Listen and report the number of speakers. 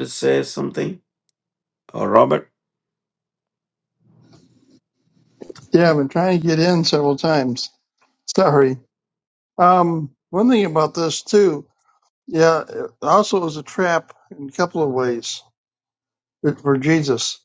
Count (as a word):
two